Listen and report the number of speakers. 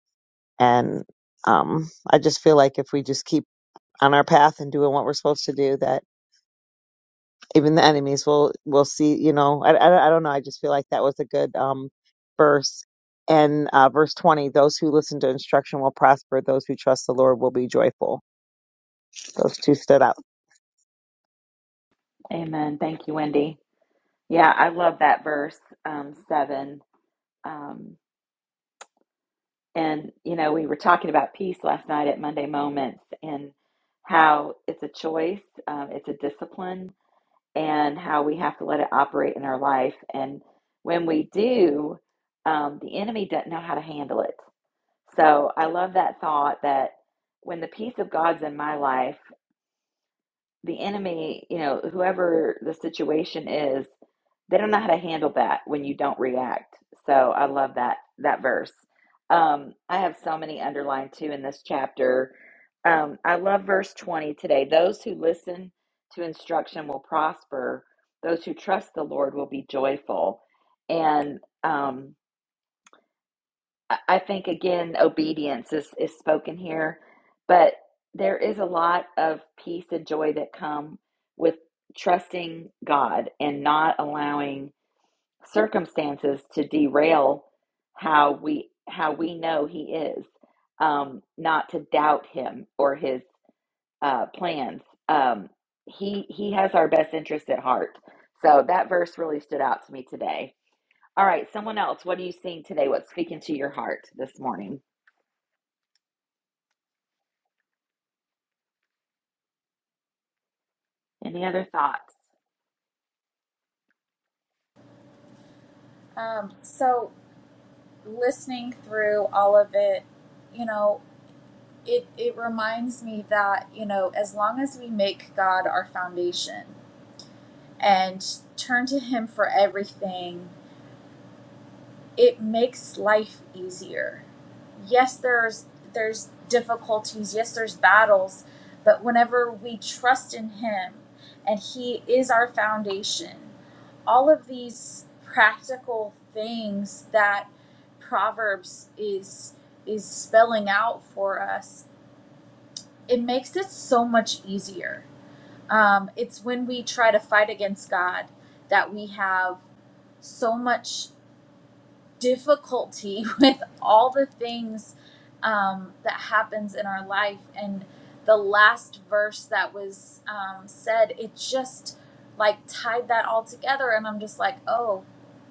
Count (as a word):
three